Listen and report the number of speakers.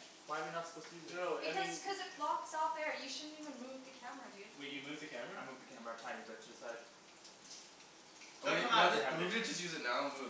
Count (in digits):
4